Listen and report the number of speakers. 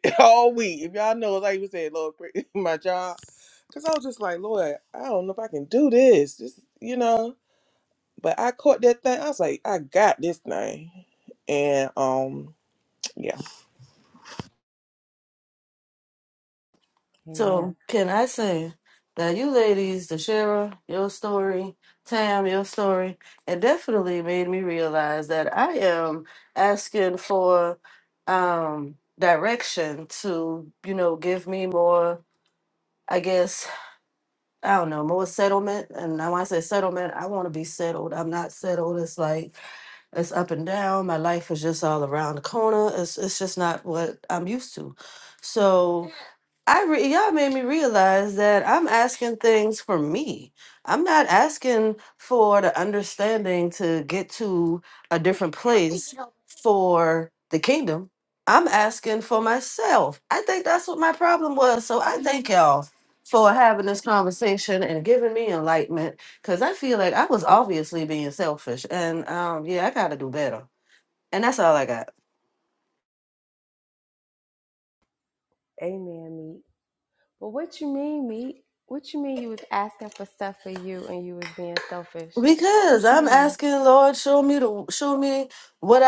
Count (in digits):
3